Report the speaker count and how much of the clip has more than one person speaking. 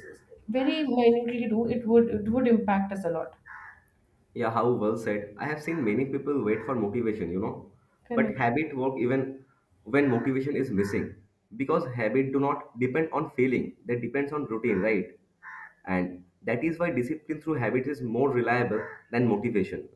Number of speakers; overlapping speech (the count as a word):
two, about 1%